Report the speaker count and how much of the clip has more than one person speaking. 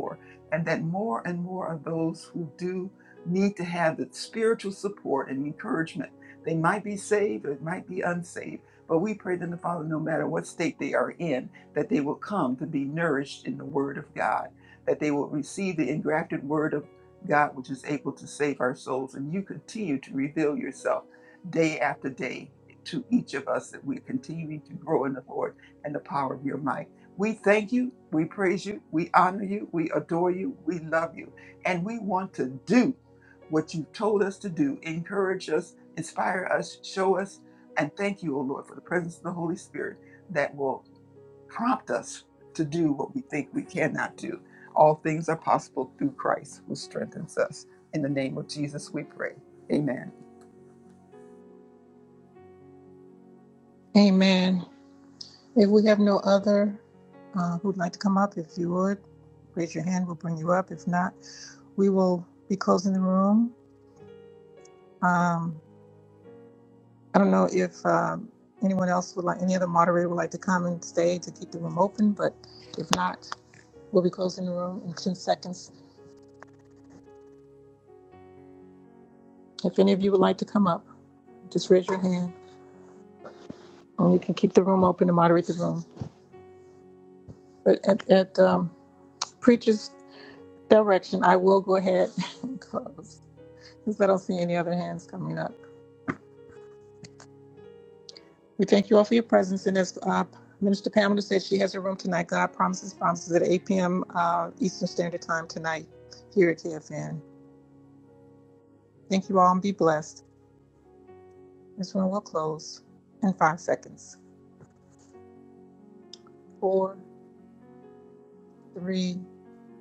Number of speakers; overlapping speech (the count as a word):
two, no overlap